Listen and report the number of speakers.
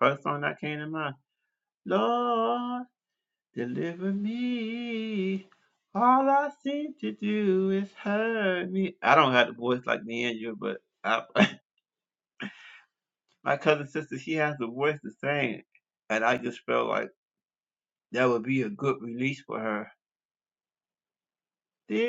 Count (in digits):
1